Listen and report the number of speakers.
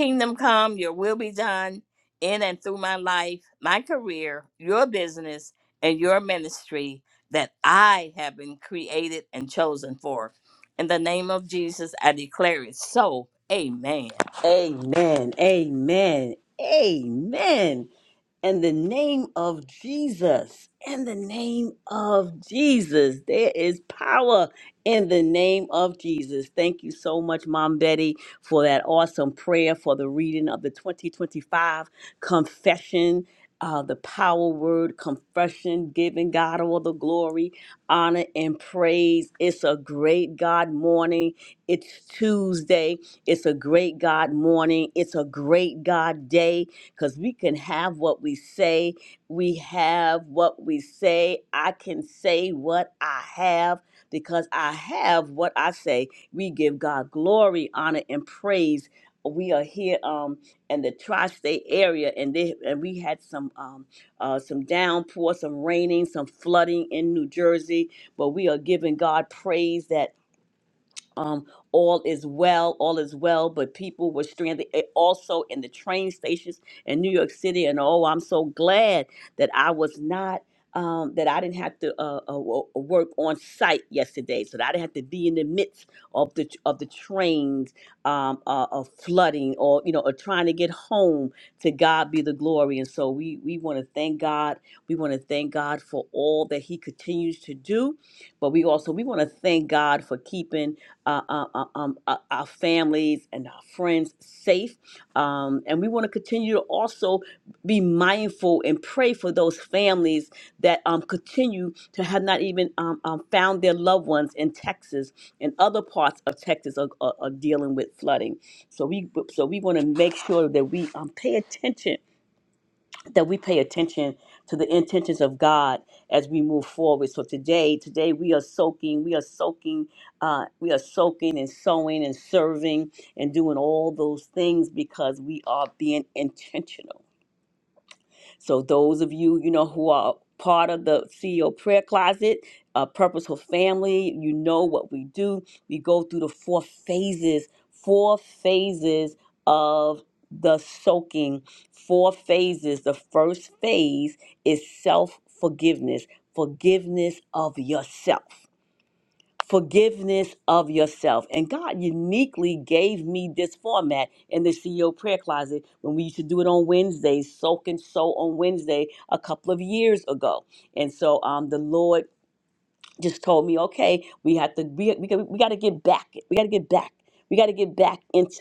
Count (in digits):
2